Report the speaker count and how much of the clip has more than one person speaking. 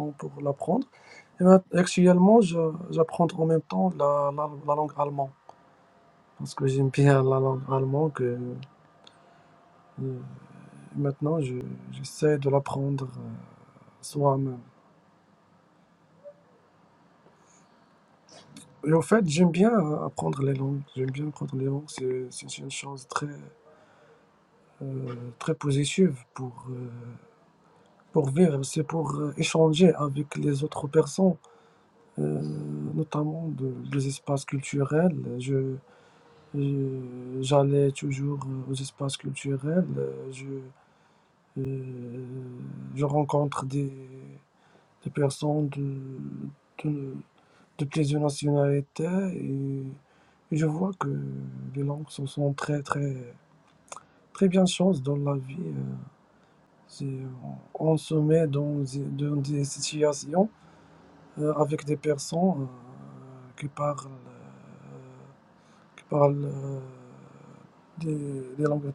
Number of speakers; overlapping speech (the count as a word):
one, no overlap